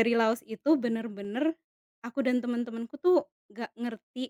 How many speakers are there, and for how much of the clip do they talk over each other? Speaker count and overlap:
1, no overlap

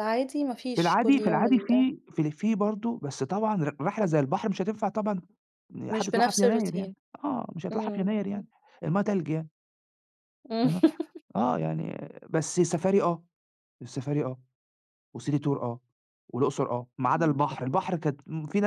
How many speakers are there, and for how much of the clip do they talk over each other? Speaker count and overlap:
2, about 17%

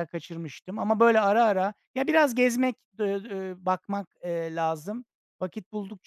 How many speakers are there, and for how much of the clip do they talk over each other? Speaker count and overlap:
1, no overlap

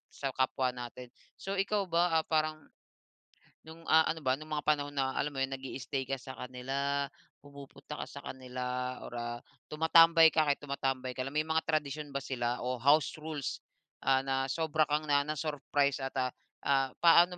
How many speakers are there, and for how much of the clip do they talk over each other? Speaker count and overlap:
1, no overlap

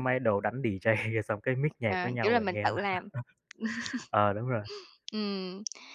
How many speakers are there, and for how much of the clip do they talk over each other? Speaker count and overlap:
2, about 13%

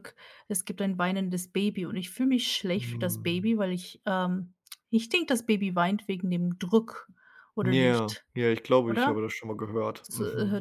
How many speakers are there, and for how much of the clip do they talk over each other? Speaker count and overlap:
2, about 16%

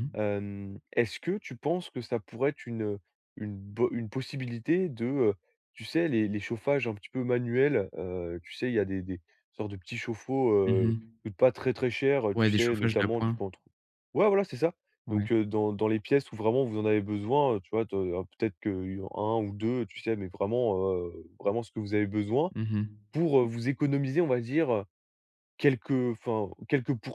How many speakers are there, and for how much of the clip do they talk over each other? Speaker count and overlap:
2, about 5%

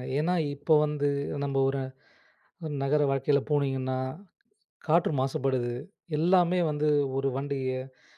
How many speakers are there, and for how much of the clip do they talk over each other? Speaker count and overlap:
1, no overlap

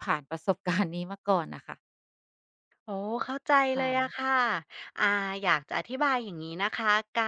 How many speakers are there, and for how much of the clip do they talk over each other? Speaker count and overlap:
2, about 4%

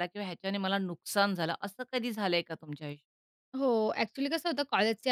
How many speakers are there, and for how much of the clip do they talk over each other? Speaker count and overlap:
2, no overlap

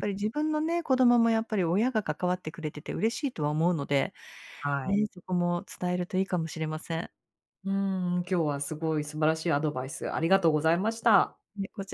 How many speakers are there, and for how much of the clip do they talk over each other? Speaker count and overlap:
2, about 1%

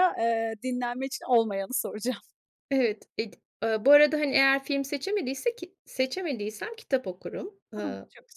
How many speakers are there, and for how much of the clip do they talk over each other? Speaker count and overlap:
2, about 3%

